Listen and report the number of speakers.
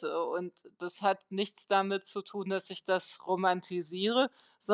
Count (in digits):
1